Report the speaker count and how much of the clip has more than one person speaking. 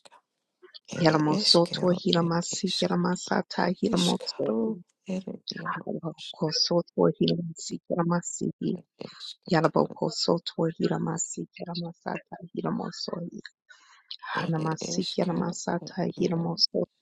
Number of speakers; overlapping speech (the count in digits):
2, about 37%